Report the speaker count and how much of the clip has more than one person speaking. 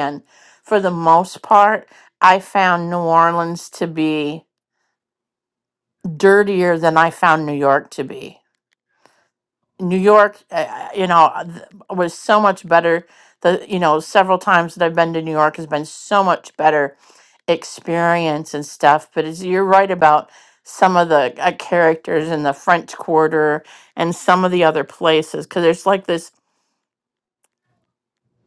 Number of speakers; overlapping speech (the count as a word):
one, no overlap